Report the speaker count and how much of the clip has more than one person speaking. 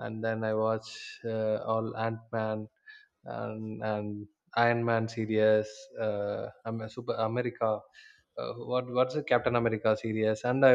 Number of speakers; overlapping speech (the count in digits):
1, no overlap